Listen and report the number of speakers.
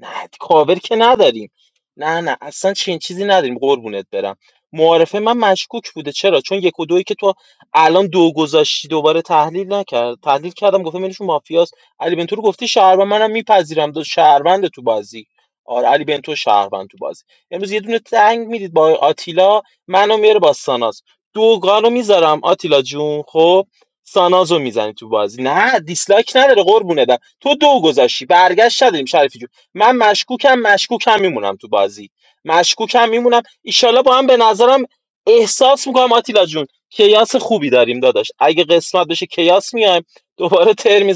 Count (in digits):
1